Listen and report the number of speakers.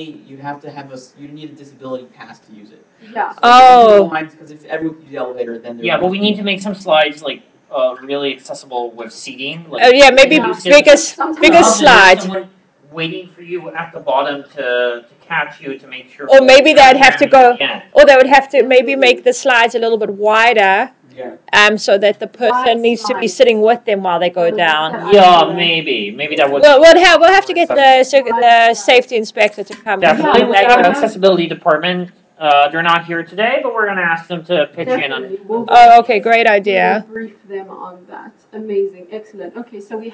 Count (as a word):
four